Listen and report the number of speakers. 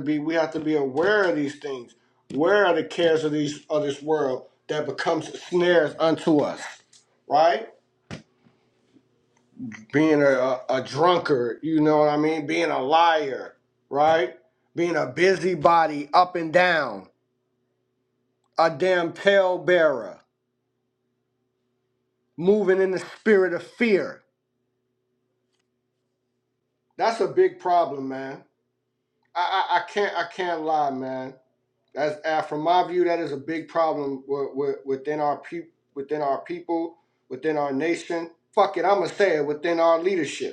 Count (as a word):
one